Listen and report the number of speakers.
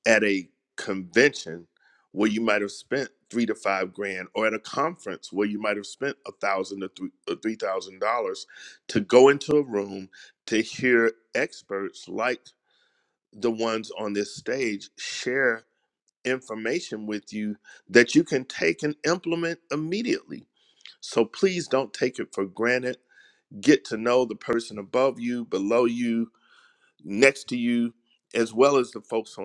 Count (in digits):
1